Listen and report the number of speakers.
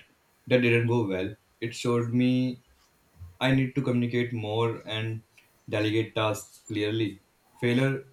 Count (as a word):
one